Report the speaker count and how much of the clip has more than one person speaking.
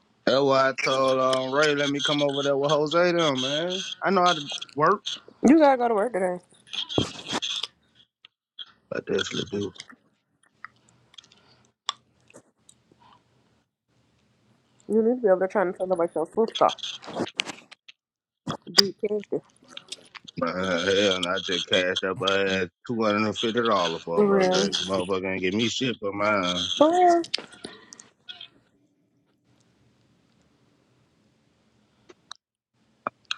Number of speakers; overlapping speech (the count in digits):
2, about 2%